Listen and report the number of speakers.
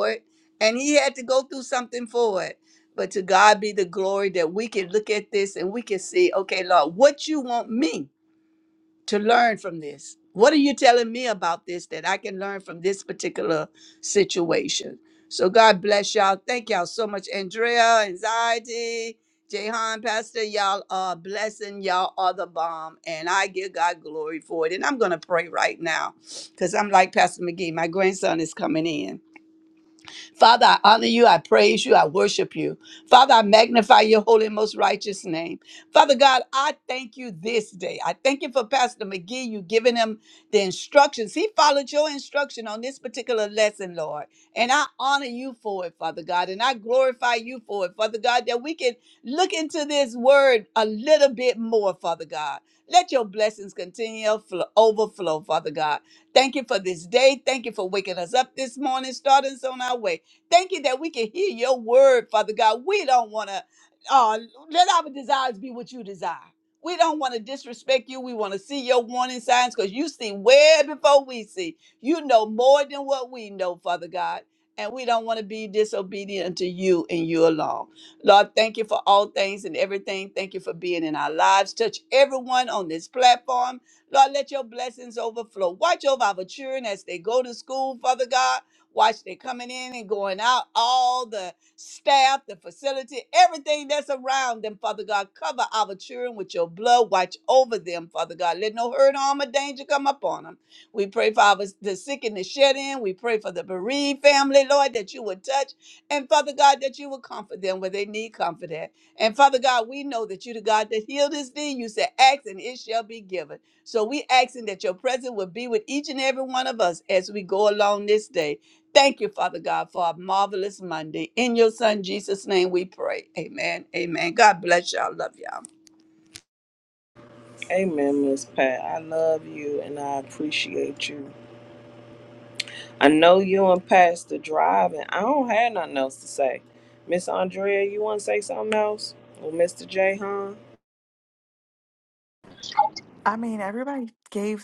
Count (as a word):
three